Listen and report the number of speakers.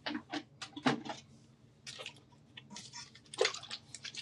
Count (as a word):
zero